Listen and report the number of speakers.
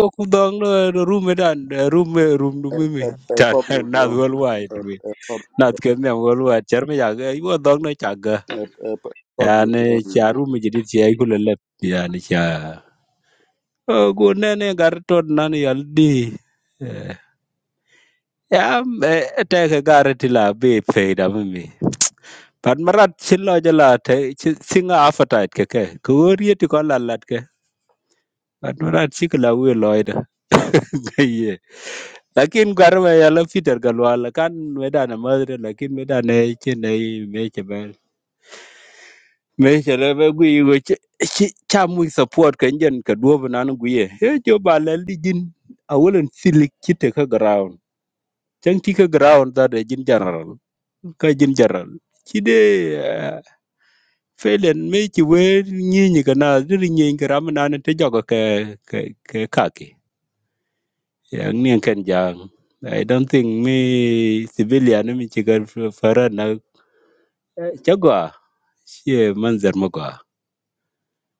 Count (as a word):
two